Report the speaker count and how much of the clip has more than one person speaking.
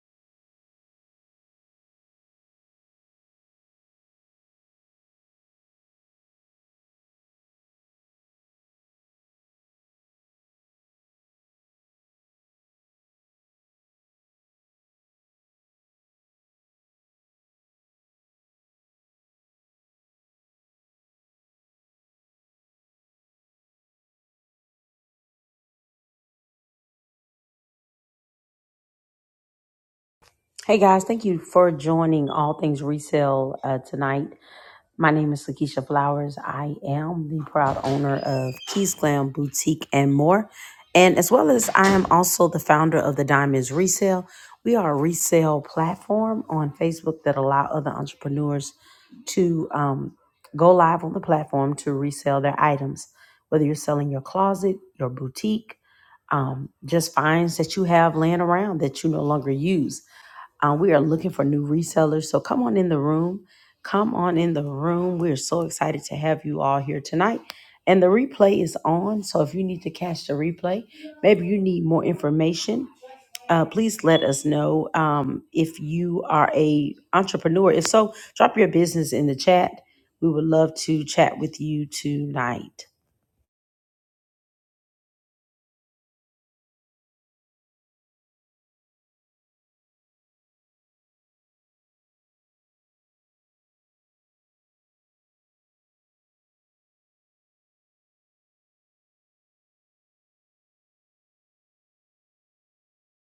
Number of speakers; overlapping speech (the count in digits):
1, no overlap